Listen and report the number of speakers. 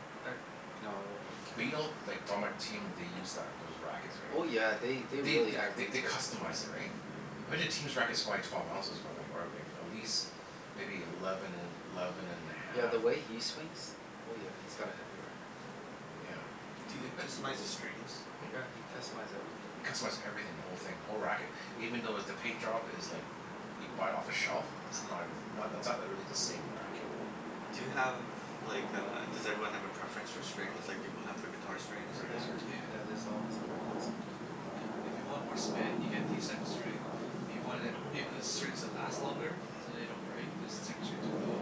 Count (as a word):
four